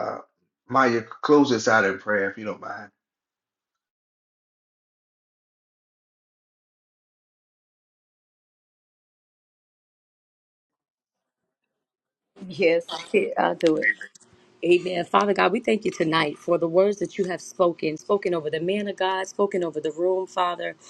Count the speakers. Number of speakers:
two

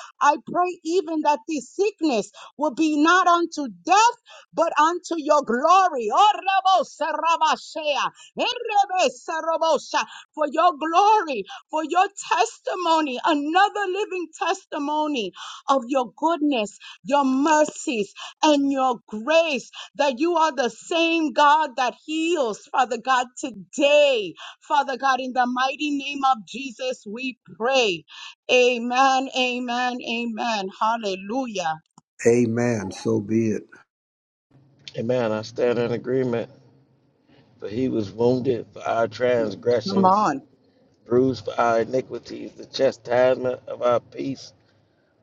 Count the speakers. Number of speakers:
three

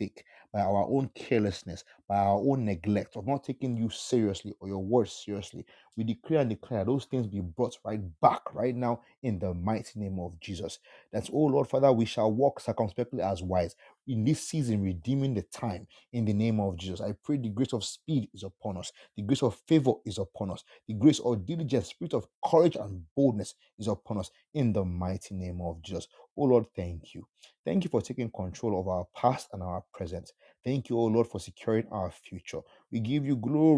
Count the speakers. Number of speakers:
one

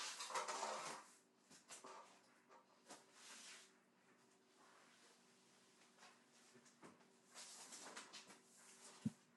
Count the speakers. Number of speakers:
zero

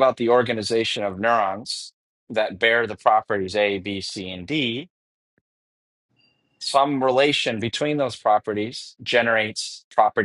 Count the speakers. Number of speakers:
one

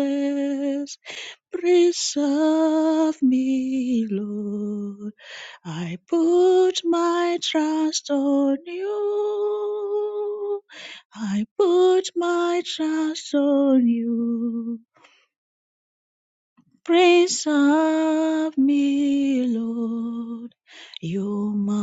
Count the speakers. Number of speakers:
one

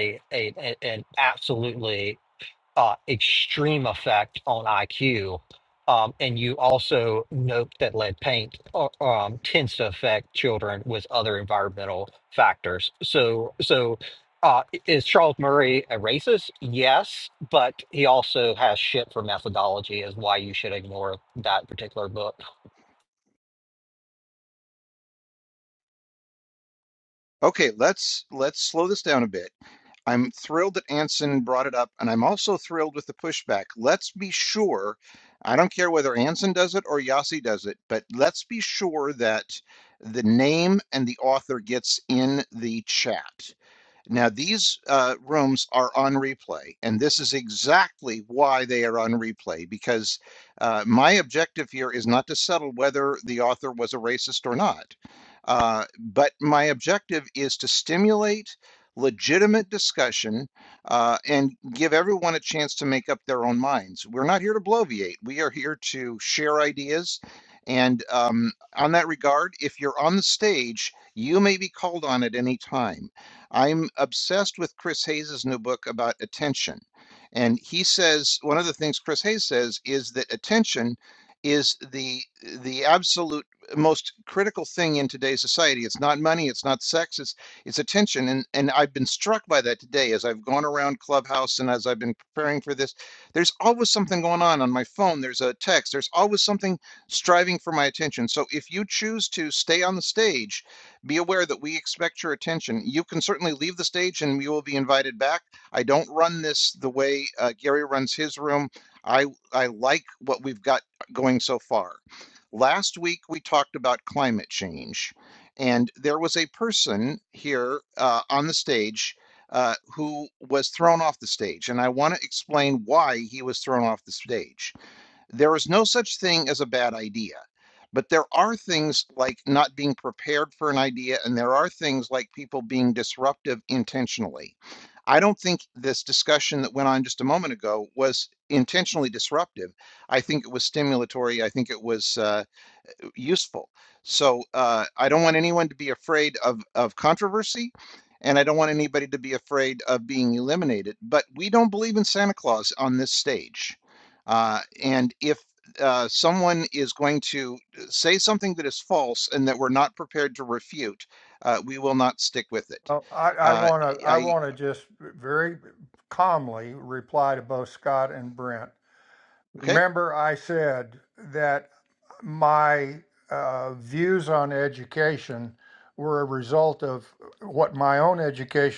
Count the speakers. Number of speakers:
three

